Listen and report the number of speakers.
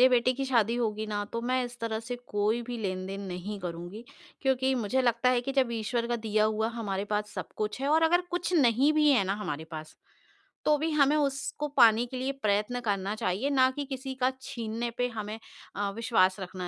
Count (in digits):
1